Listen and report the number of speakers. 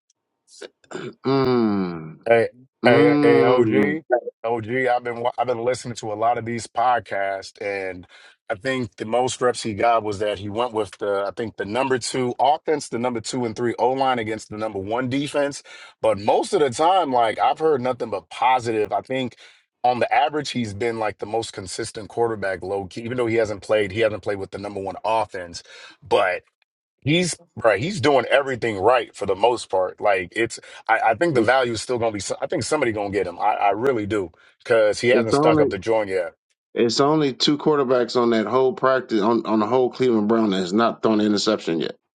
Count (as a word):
two